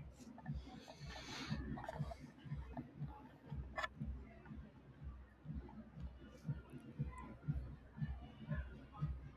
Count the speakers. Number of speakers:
0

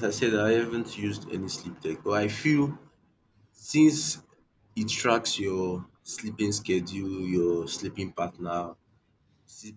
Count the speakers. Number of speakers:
1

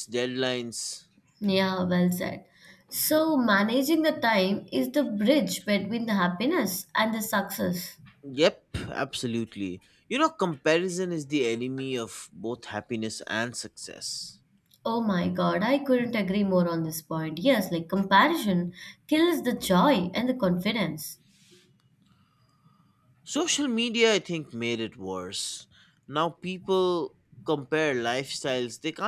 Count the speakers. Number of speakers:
2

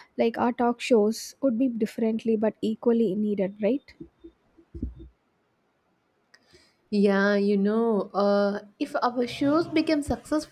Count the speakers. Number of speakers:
2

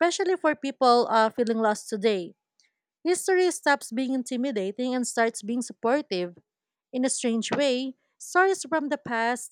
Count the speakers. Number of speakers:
1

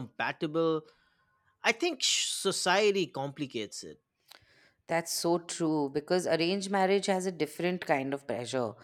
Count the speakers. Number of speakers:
2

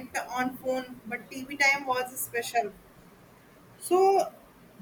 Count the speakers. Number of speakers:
1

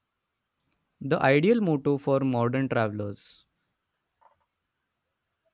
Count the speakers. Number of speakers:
1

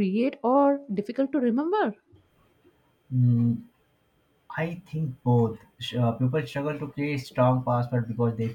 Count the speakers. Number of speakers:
2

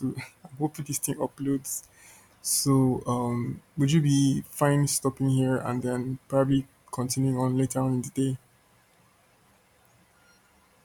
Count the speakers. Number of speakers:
1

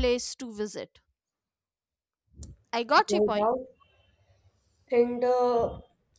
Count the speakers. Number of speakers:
2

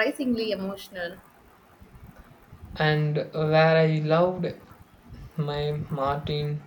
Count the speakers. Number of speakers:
2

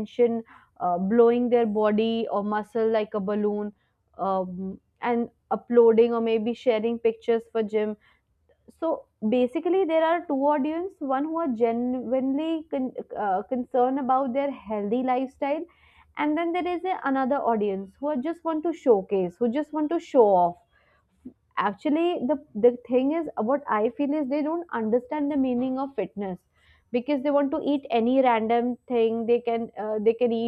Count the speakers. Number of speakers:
1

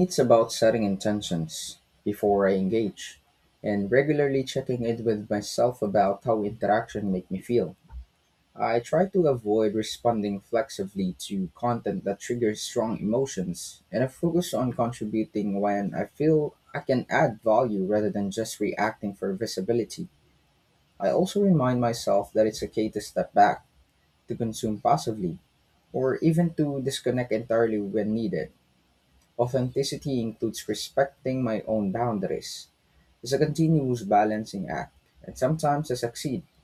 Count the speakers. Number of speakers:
1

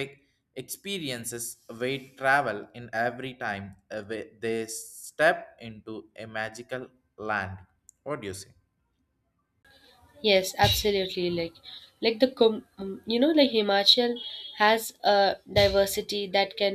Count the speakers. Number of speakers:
2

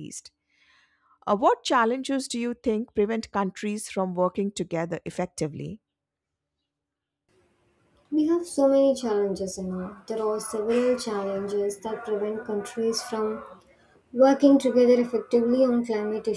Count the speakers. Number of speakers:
2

